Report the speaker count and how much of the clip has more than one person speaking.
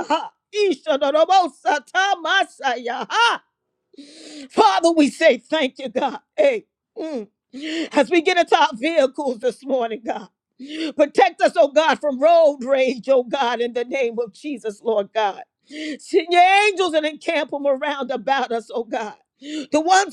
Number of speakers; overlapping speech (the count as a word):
one, no overlap